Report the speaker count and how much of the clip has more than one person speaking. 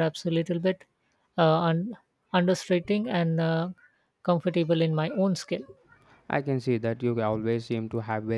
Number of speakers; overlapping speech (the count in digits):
2, no overlap